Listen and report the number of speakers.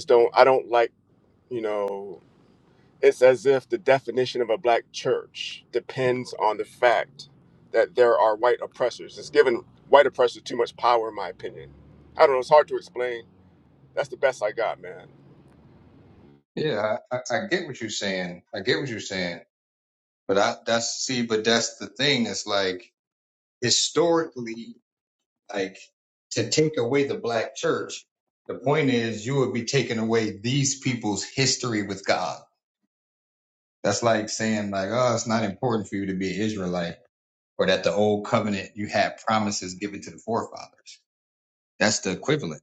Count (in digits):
2